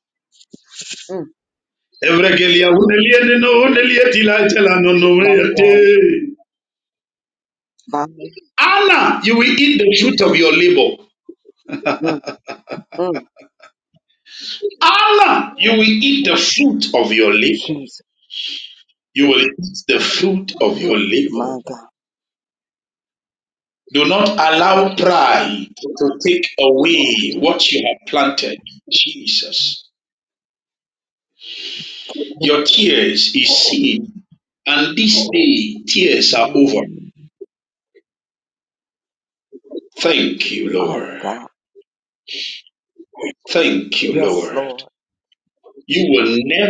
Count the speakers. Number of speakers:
two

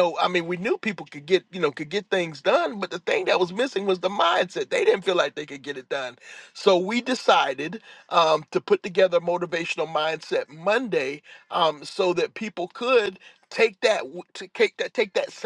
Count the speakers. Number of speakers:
one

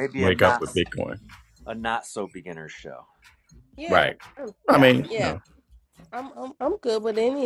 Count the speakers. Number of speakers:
three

